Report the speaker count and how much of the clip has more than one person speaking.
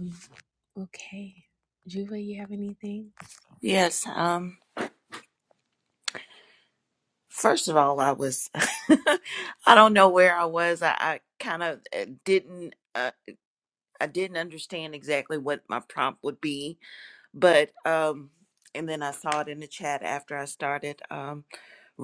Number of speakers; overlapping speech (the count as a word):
two, no overlap